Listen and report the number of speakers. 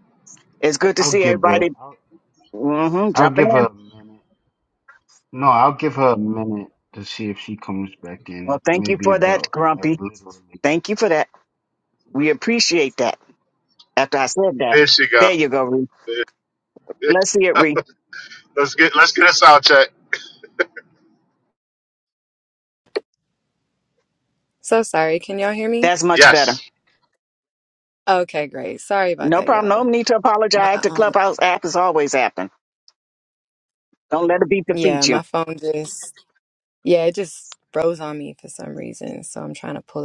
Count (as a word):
four